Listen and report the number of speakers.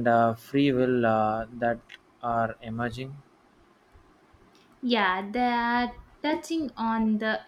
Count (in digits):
2